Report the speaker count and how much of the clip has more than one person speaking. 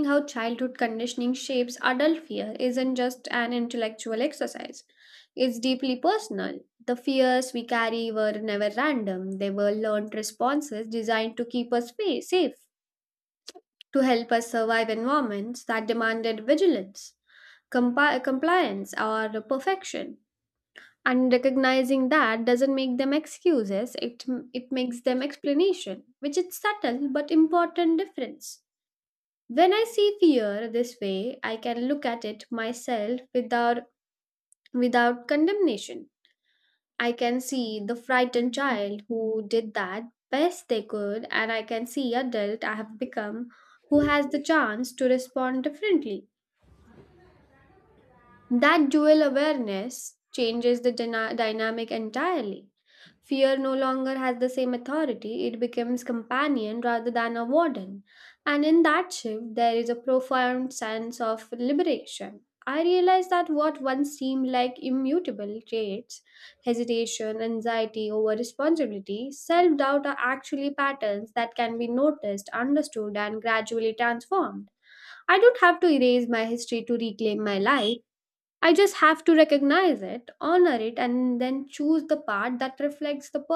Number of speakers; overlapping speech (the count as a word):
one, no overlap